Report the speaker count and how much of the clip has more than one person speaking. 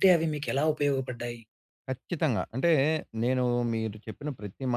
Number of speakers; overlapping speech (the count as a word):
two, no overlap